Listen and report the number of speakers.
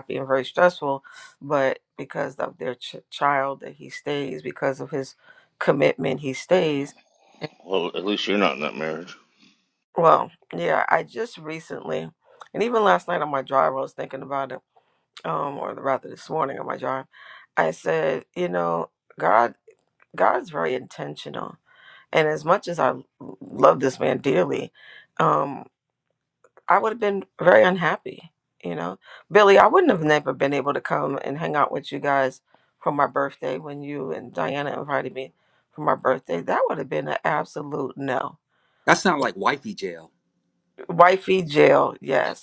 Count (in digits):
3